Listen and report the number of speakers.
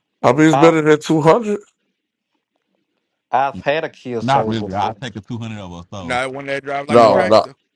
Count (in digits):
4